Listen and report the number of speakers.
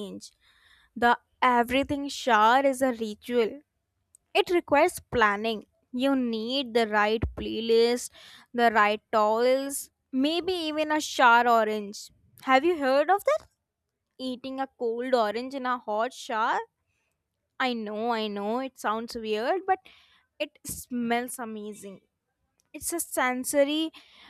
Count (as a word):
one